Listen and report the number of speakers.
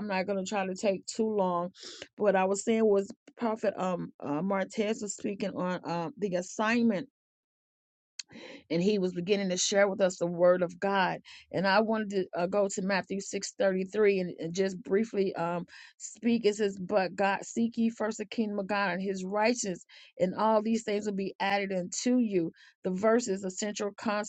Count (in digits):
1